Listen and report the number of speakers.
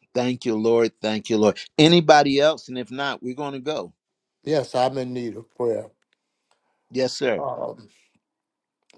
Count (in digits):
2